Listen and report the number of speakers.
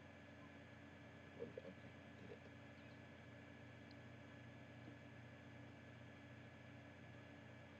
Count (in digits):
0